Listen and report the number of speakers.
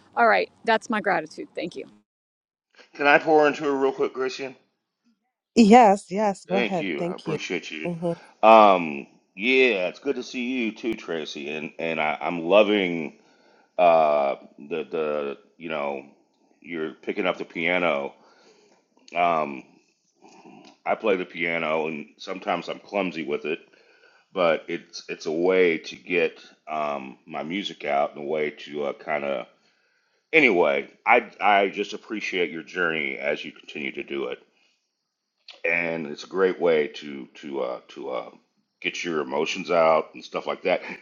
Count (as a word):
three